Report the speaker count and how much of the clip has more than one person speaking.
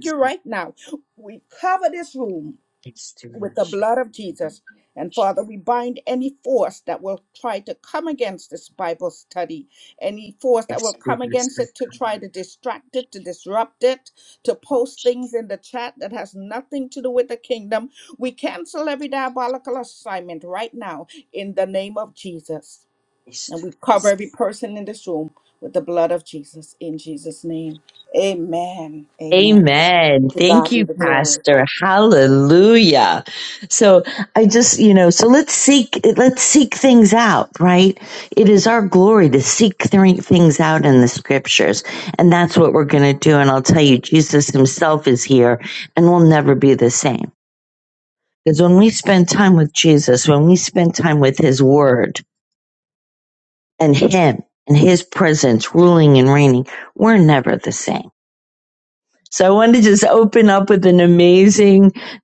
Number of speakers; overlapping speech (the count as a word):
two, about 2%